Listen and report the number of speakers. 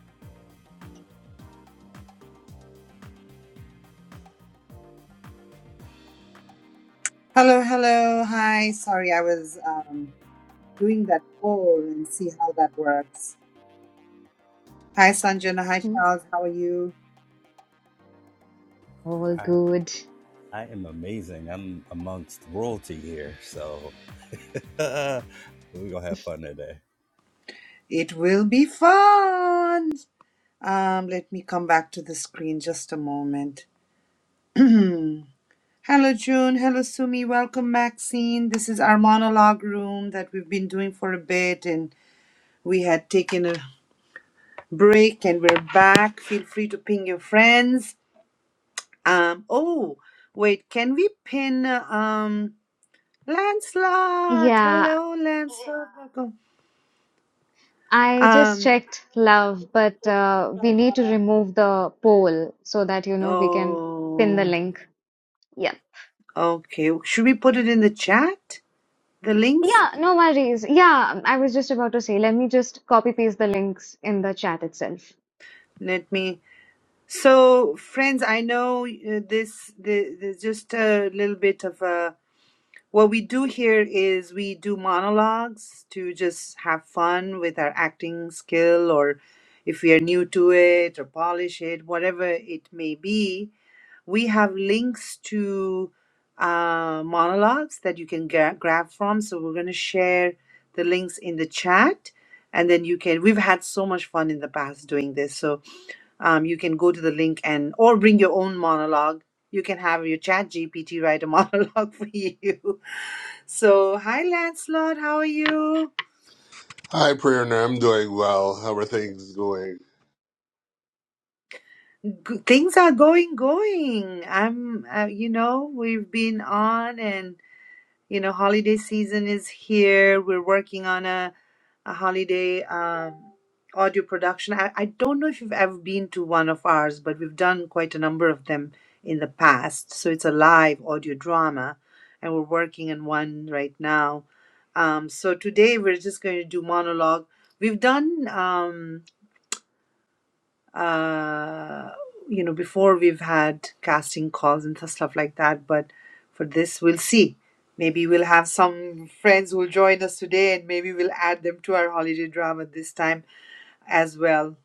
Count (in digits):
4